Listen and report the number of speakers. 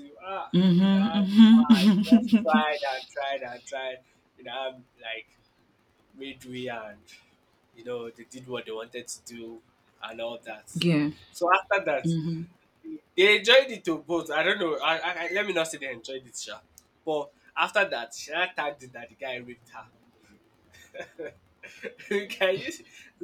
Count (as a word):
two